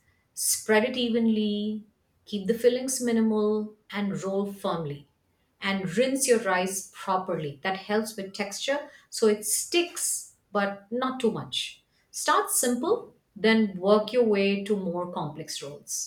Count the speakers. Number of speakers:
one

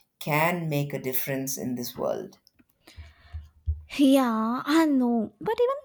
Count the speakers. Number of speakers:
two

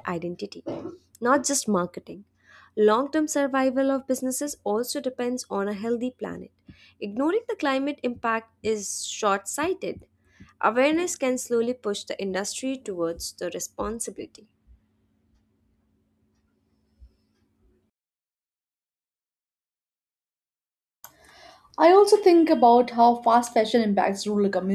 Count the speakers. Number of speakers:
two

